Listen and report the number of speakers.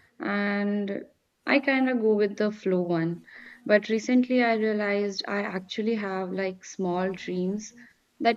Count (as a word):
one